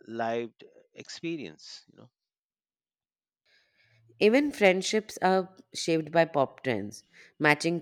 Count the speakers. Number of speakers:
2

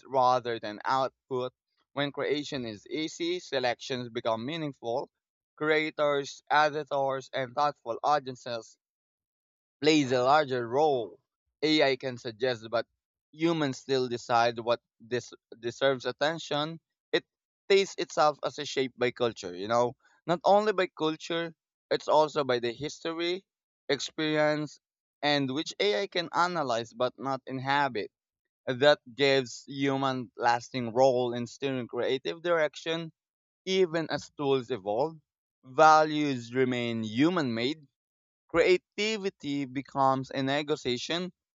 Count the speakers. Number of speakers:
1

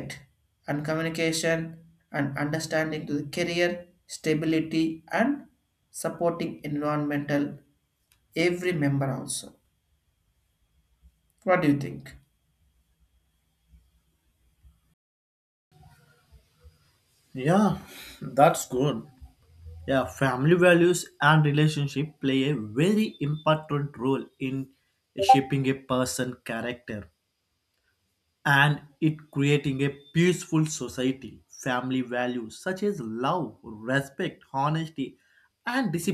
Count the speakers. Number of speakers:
2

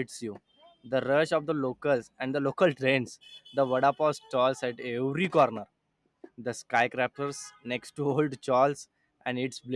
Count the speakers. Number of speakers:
1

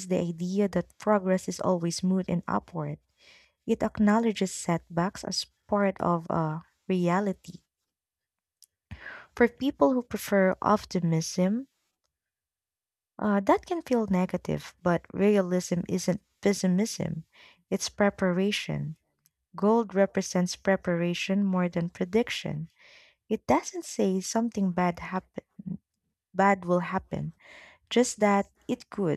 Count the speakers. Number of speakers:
1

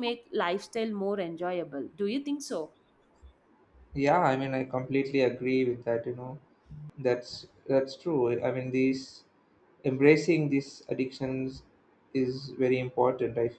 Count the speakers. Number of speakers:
2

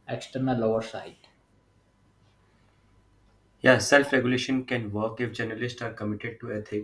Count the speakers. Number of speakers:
2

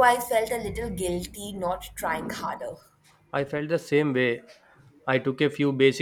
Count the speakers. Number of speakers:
2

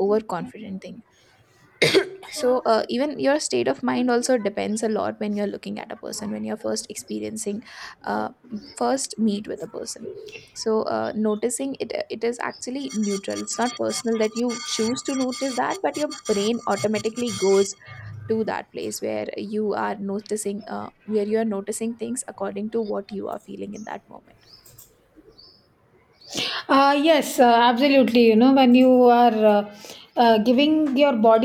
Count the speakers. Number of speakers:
2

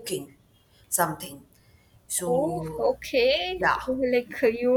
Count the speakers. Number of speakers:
2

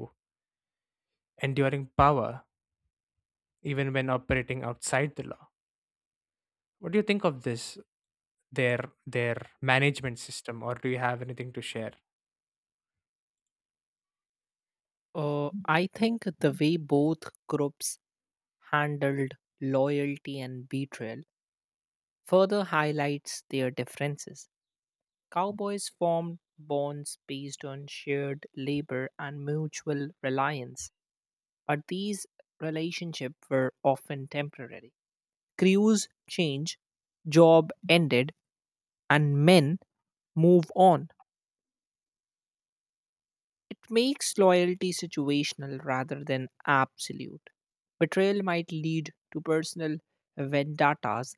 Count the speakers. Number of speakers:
2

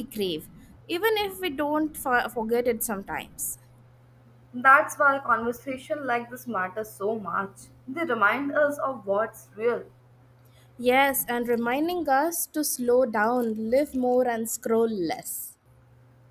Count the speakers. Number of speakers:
2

